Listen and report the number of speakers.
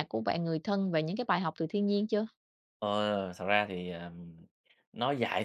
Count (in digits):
2